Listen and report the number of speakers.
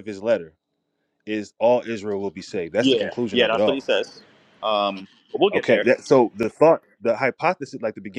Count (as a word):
two